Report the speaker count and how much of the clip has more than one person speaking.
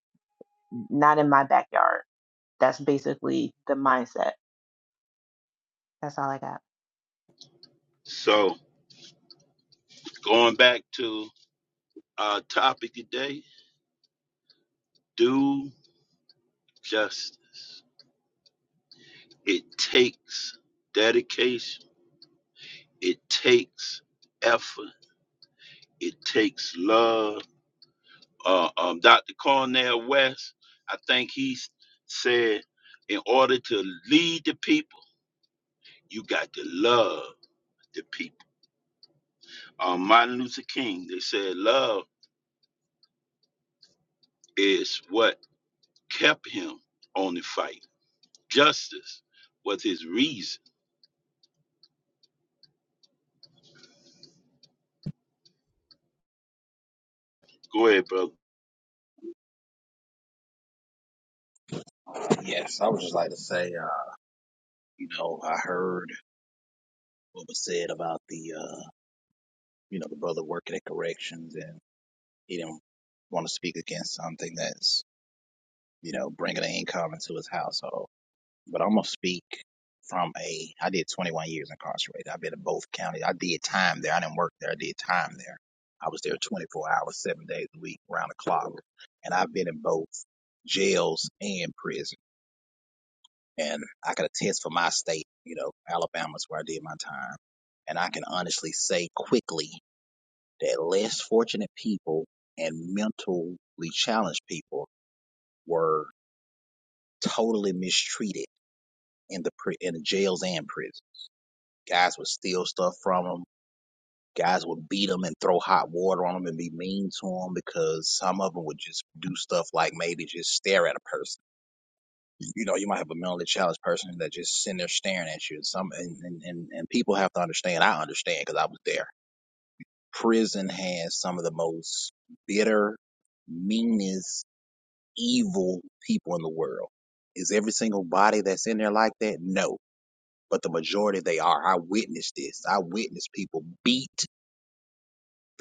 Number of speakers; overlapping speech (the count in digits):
3, no overlap